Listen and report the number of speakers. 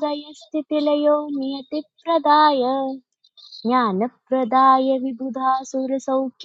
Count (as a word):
one